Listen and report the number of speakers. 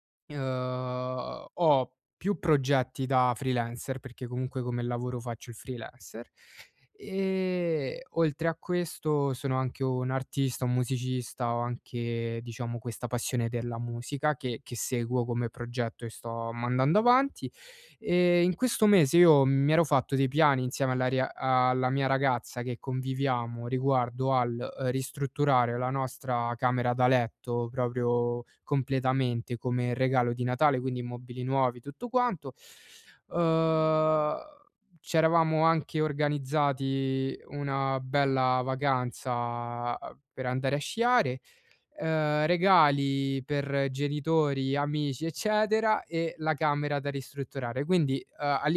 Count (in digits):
1